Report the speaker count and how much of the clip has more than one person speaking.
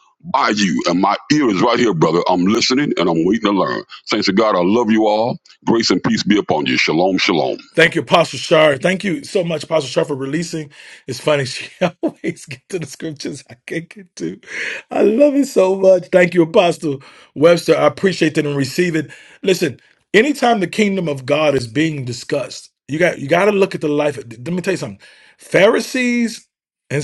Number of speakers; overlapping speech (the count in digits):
2, no overlap